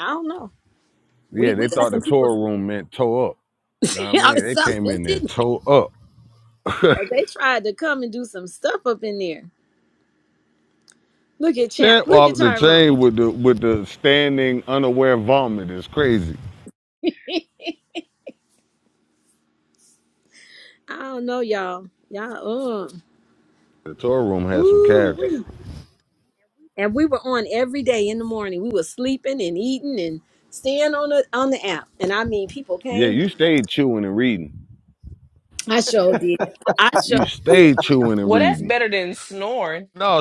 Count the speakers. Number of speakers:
3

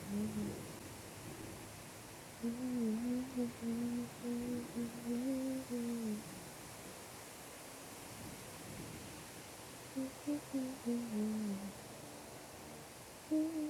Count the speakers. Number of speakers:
0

